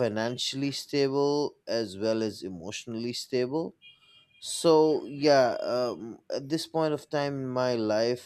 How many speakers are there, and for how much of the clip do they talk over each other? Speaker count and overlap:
1, no overlap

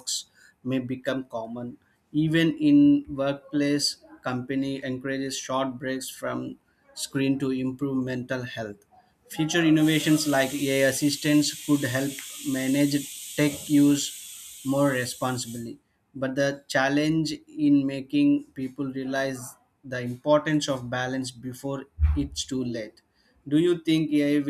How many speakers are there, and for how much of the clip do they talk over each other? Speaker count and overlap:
1, no overlap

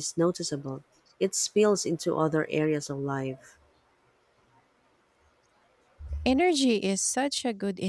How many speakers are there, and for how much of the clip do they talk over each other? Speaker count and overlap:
2, no overlap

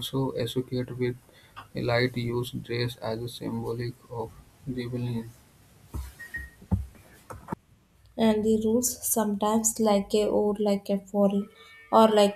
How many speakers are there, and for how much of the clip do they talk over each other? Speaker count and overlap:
2, no overlap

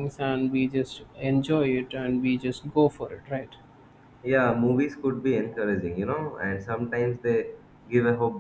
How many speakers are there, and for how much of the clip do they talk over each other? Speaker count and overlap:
2, no overlap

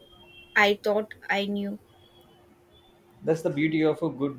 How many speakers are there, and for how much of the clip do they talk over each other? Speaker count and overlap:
2, no overlap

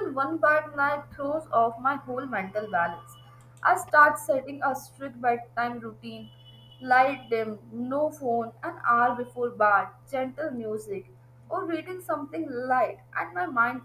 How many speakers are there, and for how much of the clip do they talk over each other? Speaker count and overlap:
1, no overlap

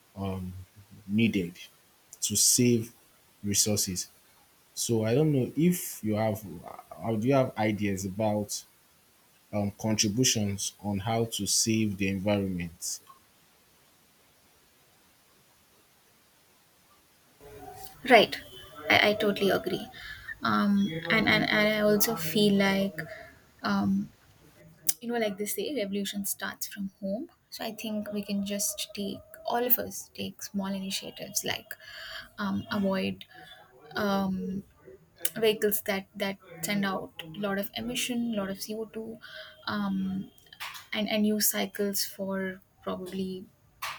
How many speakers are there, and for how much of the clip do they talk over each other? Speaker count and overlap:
2, no overlap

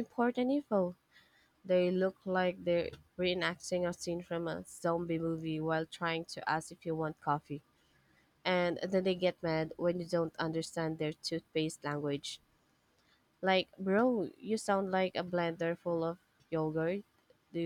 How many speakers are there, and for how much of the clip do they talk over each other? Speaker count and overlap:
1, no overlap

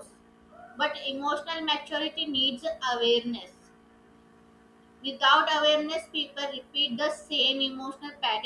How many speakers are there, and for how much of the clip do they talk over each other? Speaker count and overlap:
1, no overlap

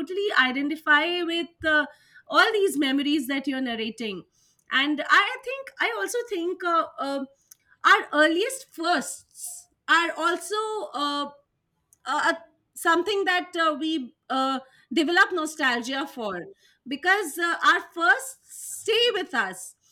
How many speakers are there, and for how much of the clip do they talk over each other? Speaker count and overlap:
1, no overlap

